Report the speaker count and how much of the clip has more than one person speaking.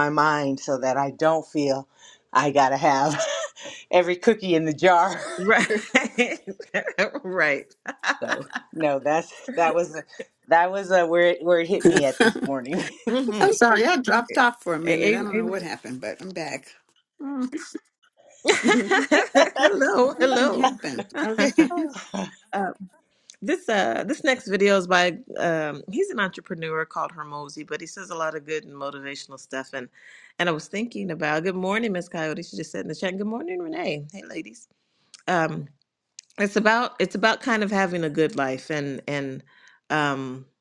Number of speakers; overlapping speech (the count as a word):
three, about 4%